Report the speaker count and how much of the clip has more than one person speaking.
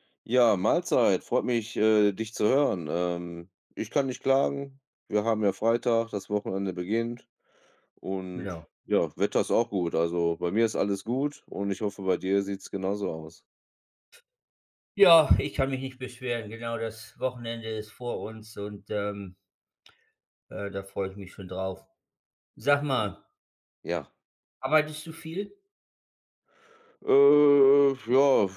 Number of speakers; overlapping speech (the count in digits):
2, about 1%